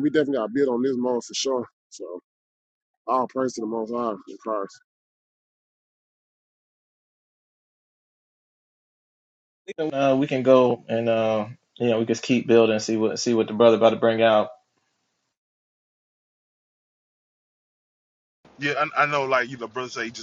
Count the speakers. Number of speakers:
3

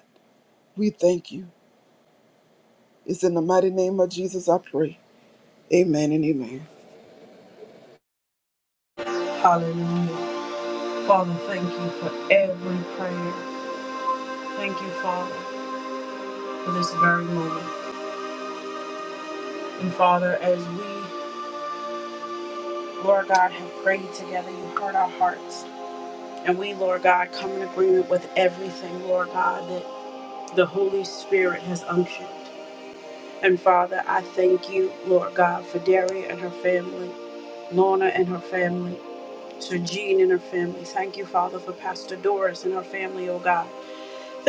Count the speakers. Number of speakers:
2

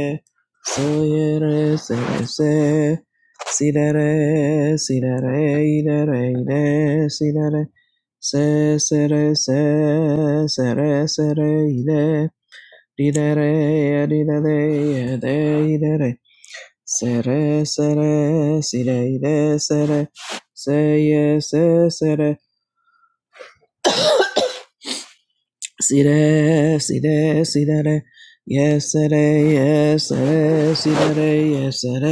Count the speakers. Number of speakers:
1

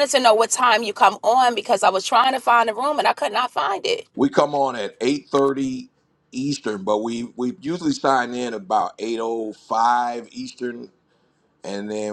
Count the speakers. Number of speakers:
2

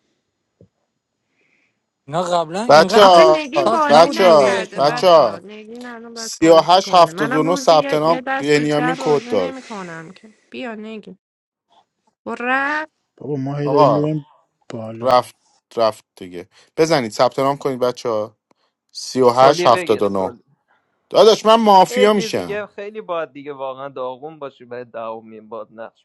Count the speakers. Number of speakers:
5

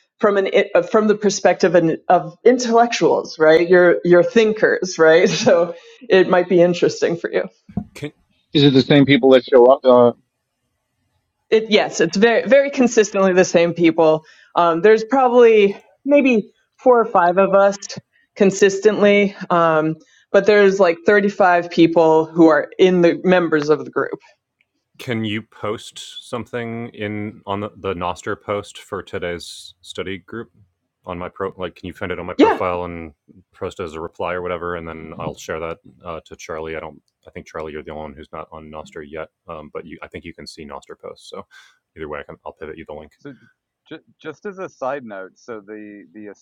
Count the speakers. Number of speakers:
4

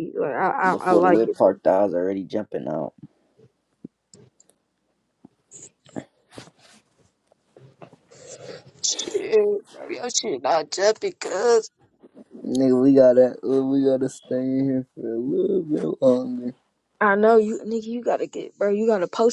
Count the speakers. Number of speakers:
2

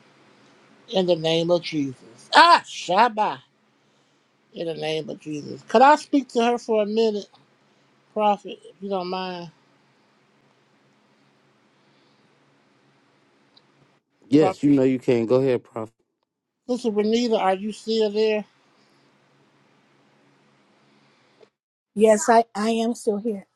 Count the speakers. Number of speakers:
3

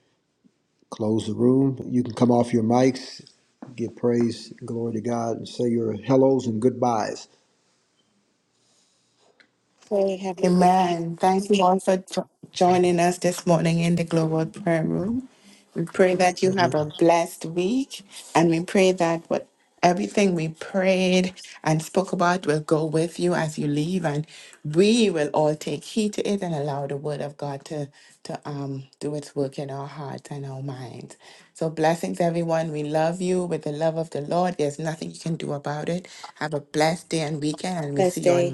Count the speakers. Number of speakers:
3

